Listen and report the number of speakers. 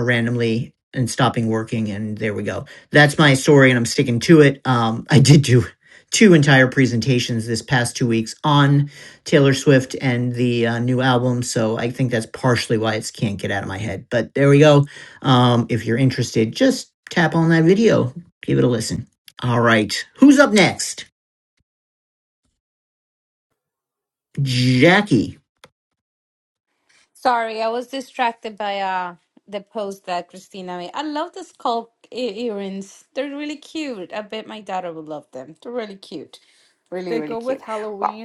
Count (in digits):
3